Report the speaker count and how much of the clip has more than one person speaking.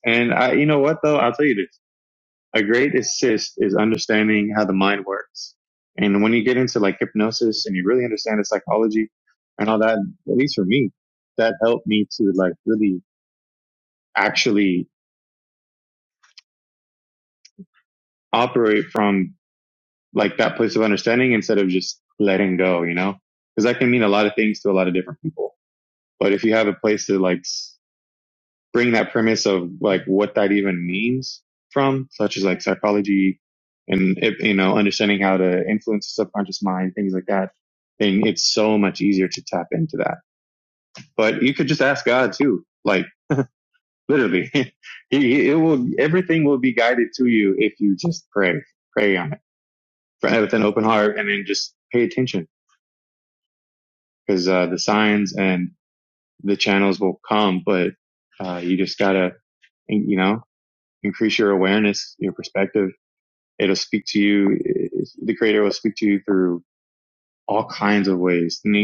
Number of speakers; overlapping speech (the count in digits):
1, no overlap